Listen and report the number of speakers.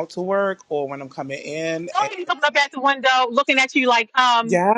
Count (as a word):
two